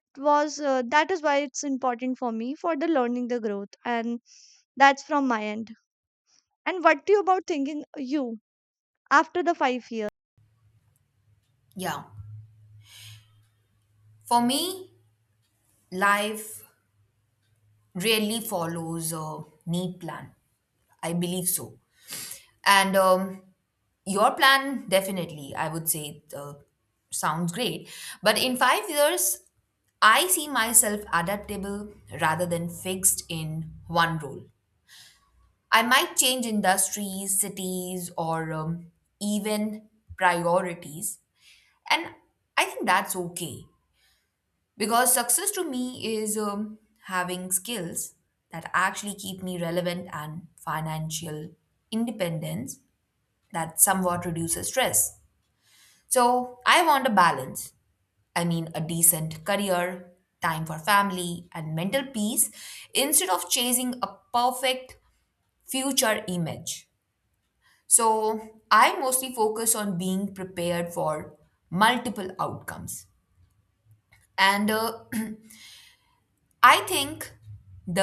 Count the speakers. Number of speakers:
two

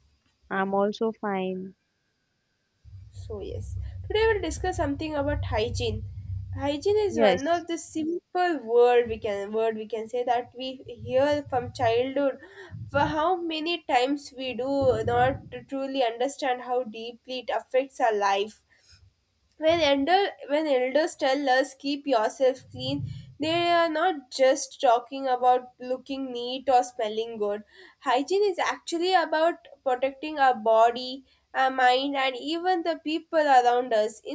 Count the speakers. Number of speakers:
two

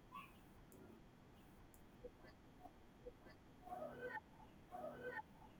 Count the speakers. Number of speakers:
zero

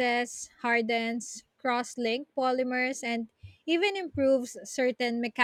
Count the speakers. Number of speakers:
one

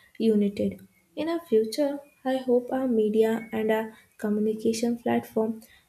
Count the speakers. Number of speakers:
one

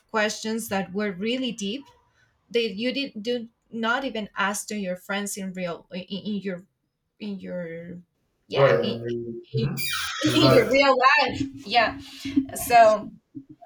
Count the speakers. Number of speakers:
two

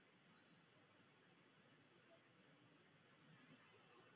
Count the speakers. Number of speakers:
zero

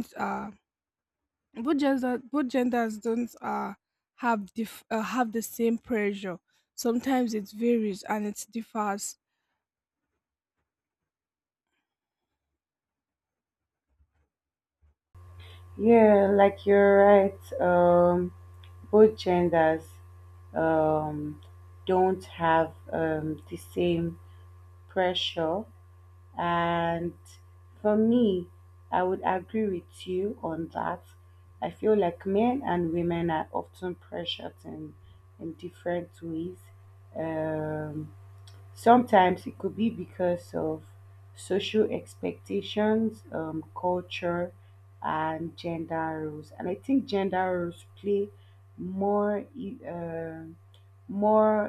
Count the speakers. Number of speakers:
two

